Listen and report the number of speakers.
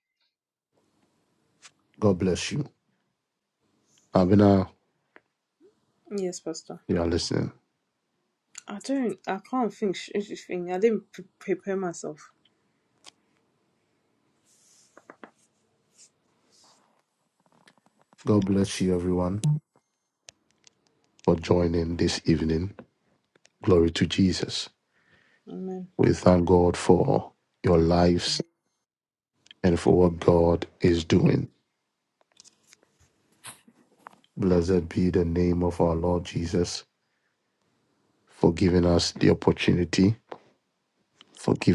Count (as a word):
two